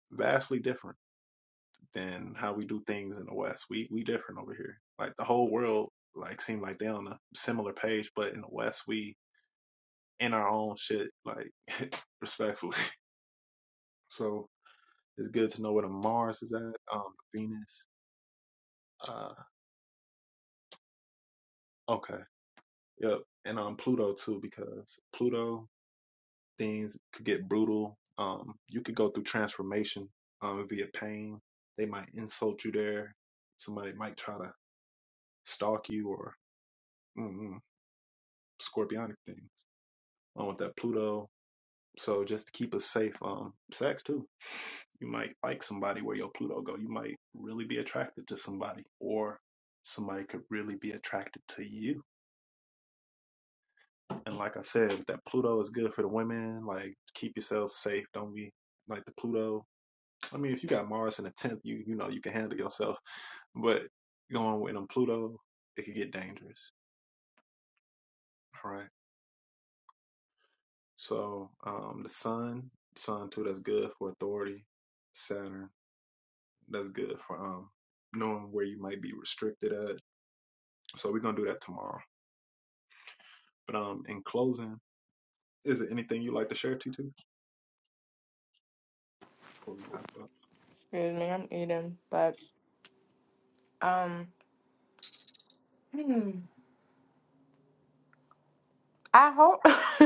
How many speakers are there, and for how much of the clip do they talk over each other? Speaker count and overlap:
2, no overlap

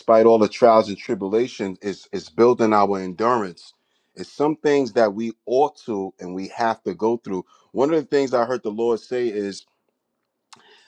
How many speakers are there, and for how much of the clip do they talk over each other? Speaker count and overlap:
1, no overlap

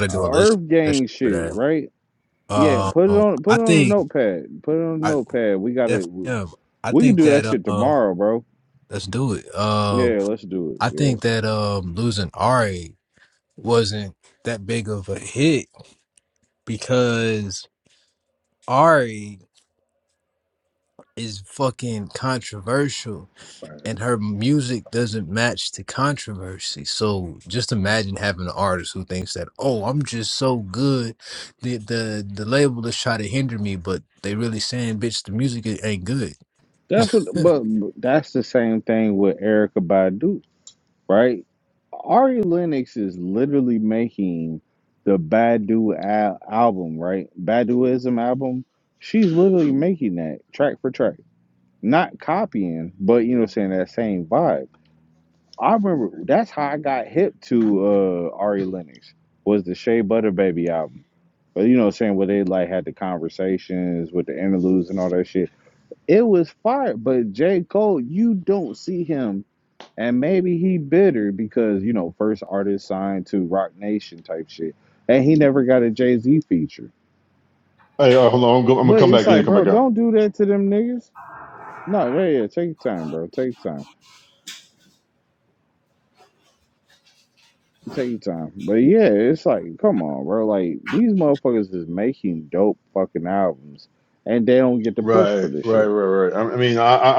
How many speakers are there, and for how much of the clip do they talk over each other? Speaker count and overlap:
3, about 7%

